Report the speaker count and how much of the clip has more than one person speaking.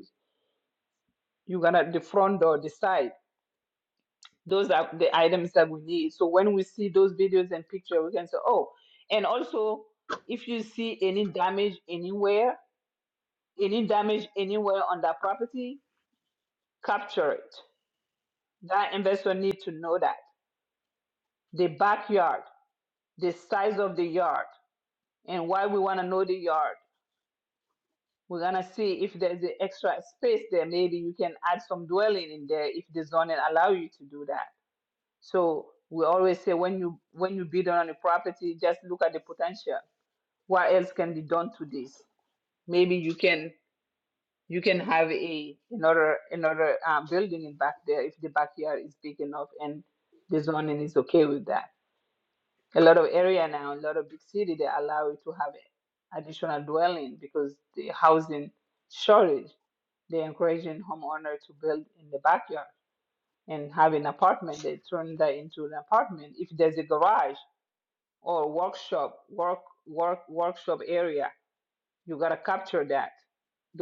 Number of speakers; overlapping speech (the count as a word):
one, no overlap